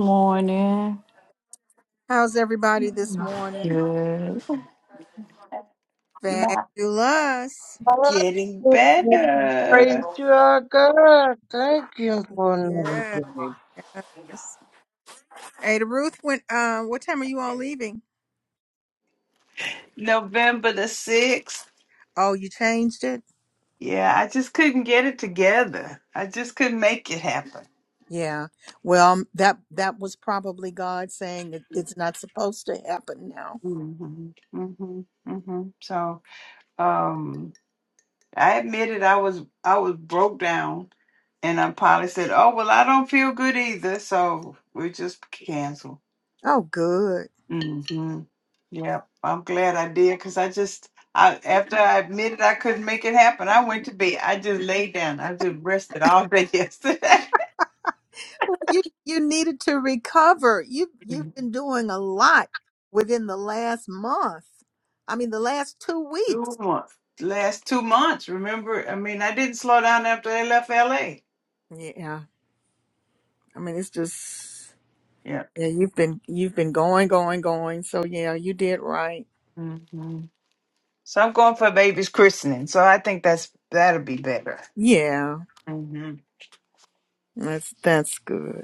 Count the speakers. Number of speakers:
four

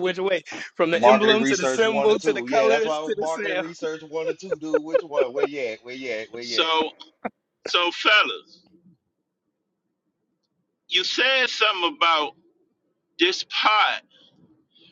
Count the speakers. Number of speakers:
three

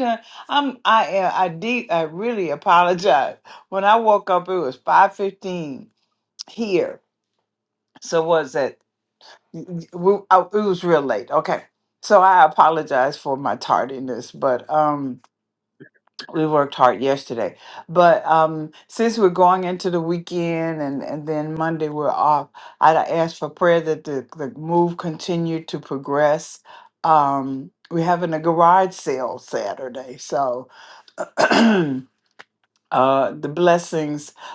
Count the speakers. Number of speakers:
one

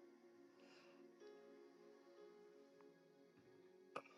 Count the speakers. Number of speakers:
zero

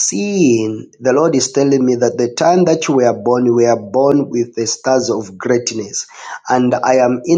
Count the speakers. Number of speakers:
one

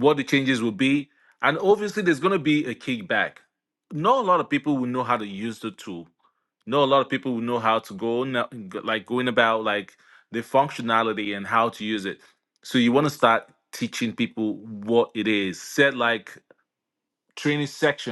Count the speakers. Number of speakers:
one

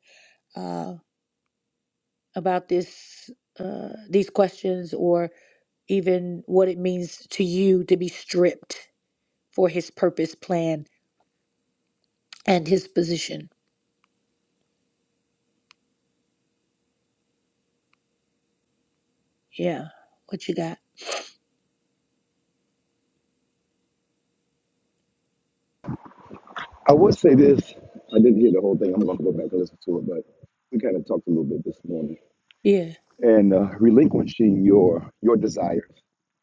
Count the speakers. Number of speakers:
two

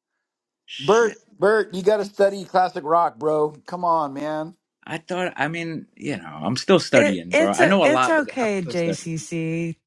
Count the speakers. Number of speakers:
three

